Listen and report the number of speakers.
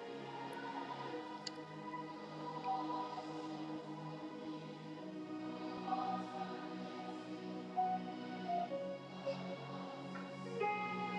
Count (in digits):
0